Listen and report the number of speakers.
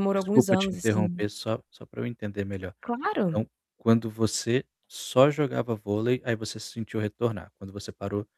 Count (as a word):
two